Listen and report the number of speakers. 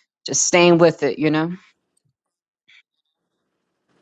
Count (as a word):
one